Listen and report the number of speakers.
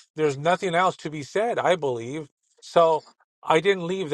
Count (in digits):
1